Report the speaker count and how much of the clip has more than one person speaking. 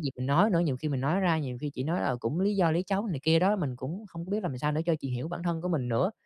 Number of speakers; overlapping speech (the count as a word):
one, no overlap